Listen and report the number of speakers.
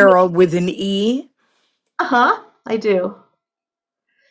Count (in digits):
2